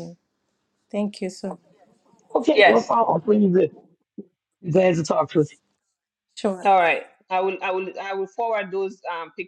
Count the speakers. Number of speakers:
three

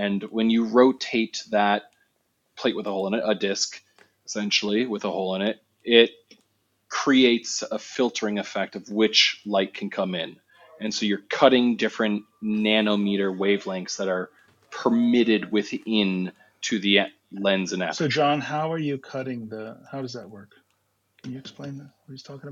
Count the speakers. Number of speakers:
two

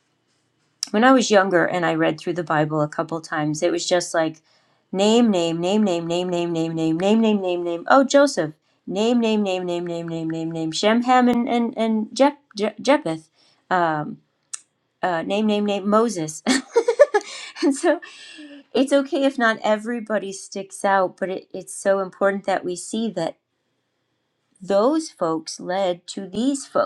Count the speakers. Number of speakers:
one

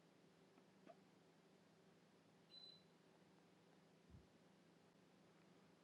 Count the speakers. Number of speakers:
zero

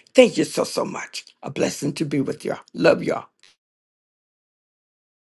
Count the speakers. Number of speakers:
one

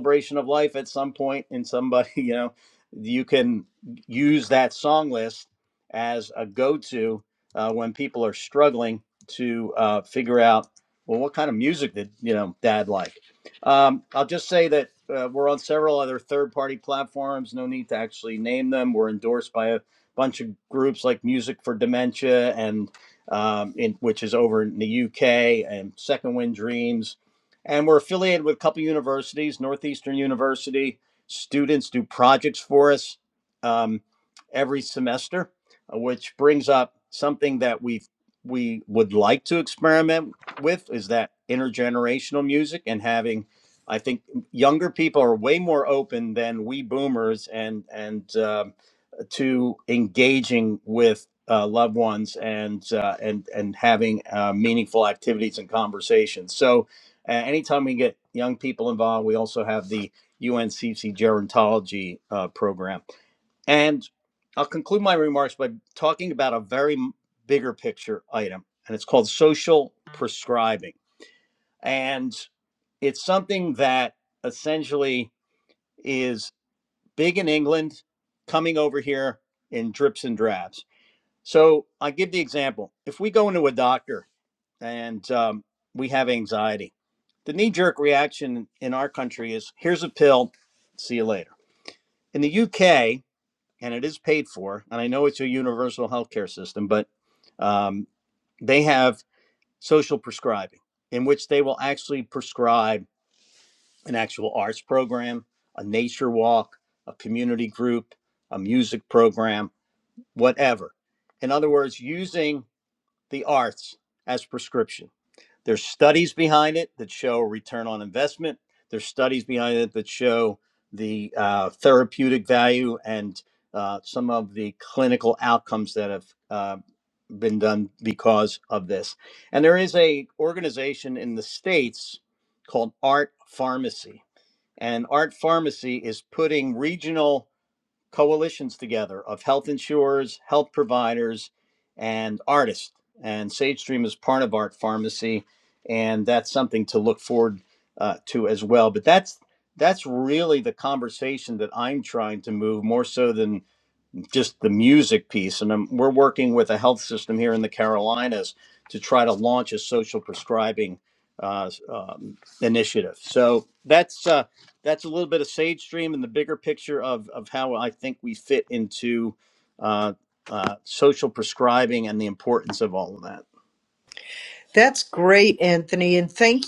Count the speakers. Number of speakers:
two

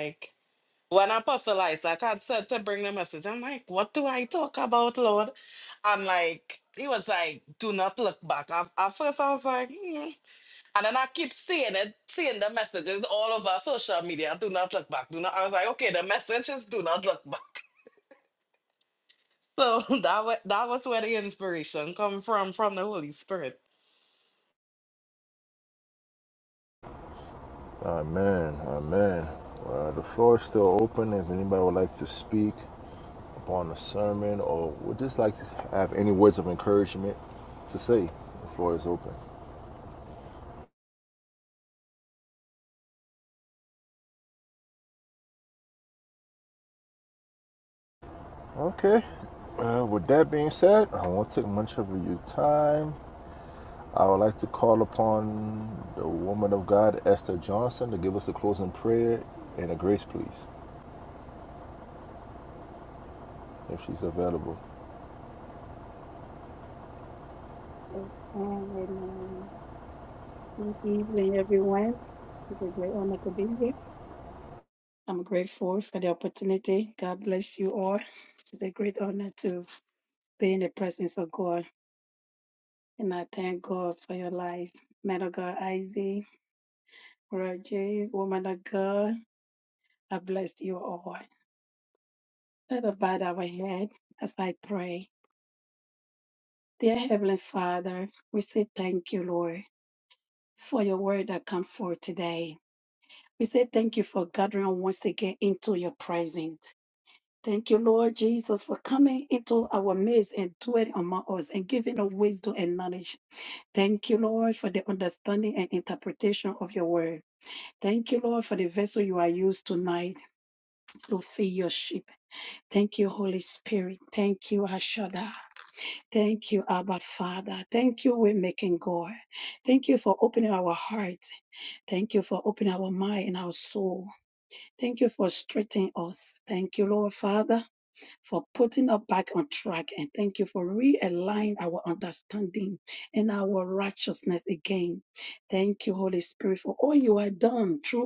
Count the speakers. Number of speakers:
three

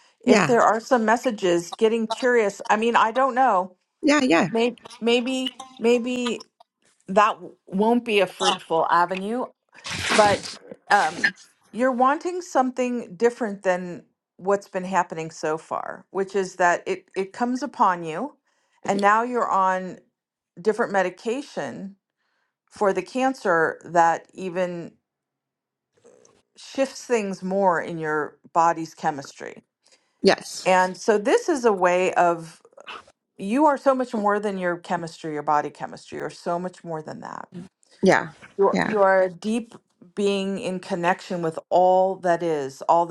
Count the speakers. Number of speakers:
two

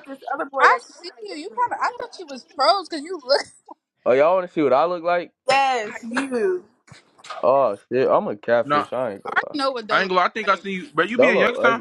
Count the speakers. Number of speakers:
four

